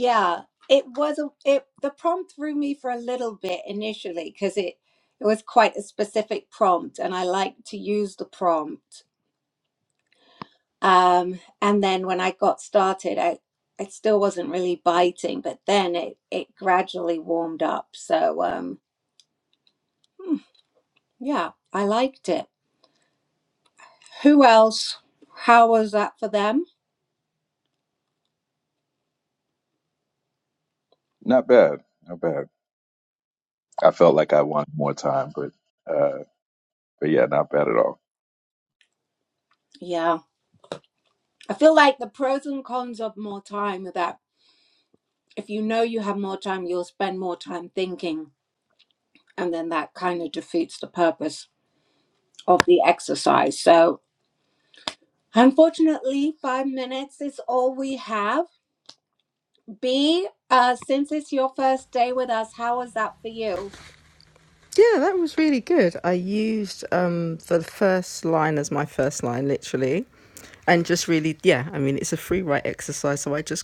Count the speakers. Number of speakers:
three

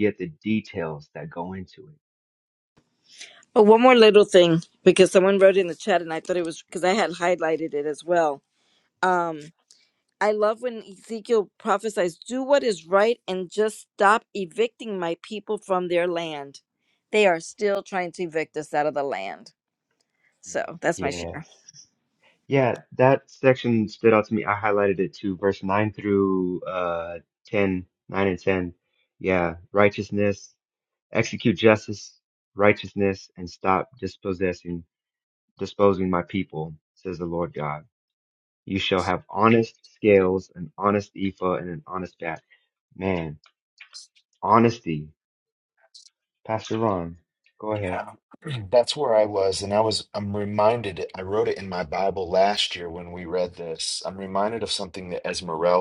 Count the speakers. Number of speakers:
three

